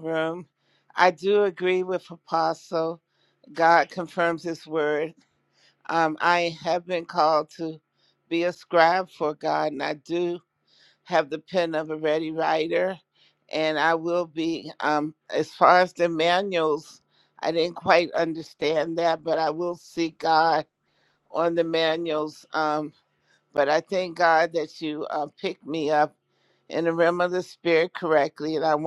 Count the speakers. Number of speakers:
1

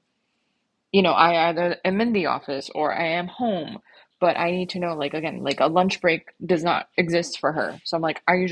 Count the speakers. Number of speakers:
1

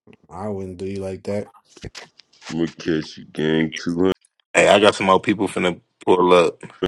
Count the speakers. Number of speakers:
3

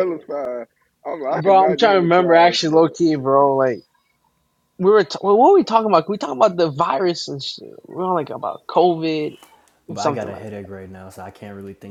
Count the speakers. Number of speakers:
3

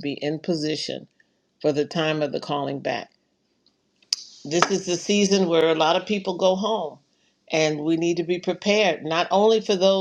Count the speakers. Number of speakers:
1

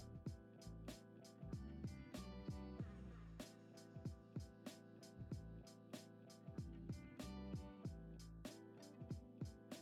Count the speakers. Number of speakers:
0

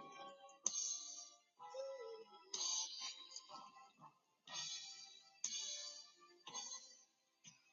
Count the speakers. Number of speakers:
0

